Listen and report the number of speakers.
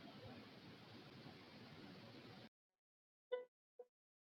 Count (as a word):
zero